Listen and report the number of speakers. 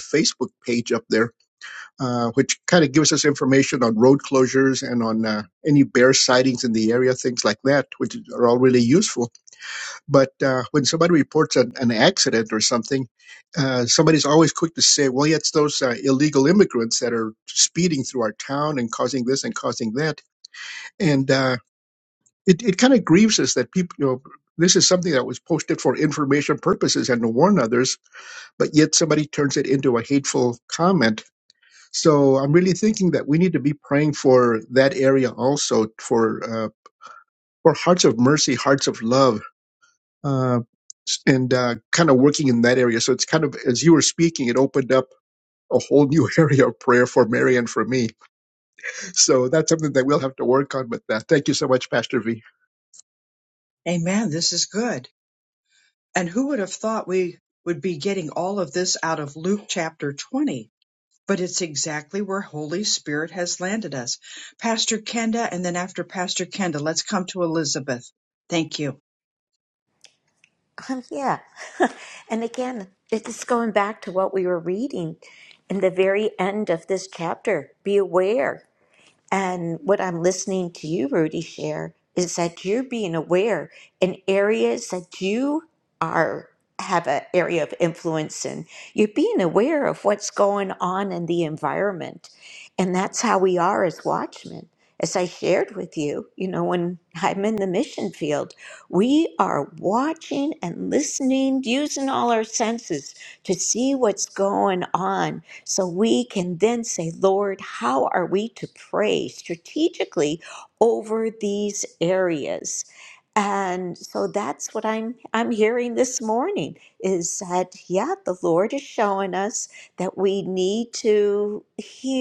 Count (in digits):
3